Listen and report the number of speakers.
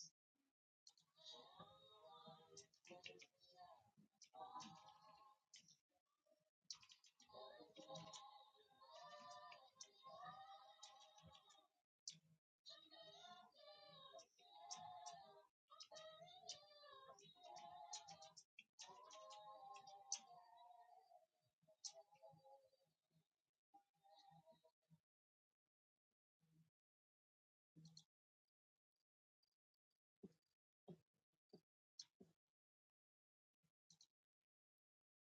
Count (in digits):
0